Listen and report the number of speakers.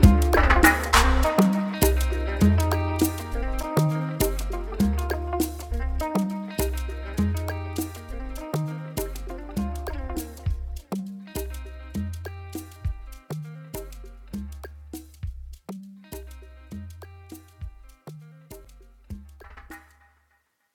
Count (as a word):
zero